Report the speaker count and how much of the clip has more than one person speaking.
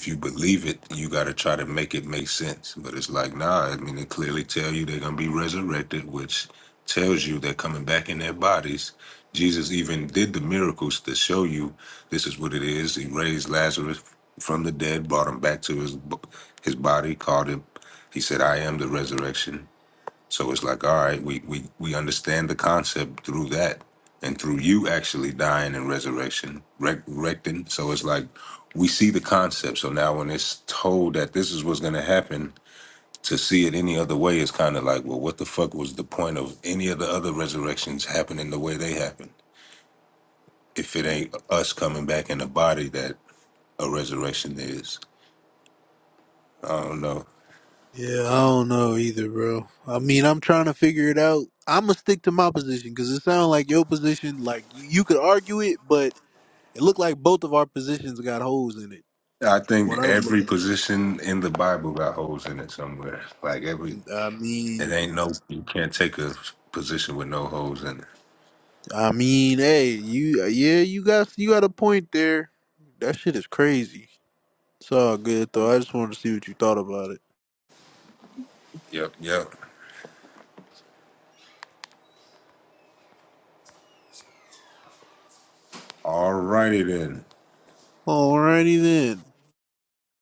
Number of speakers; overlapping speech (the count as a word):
two, about 1%